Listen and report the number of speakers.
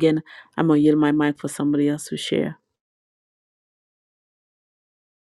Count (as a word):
one